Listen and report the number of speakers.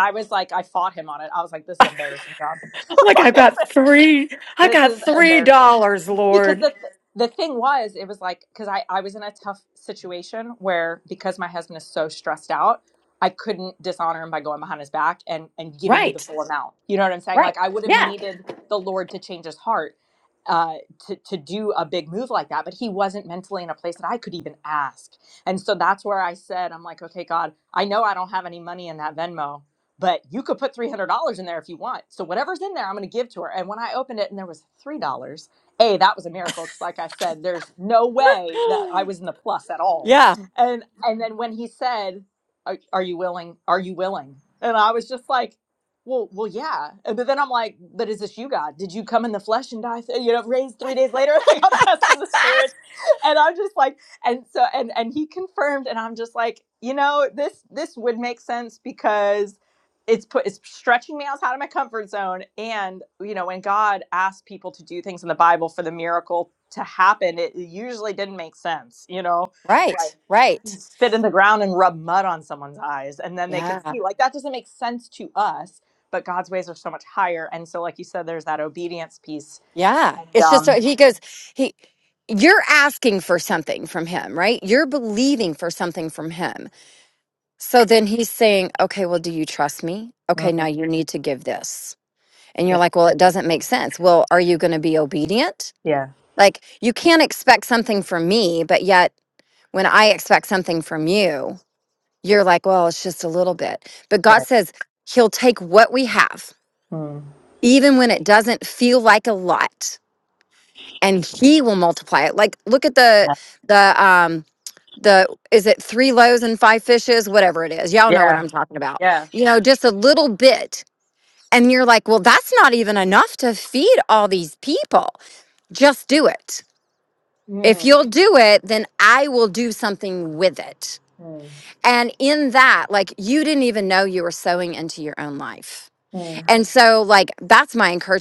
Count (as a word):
two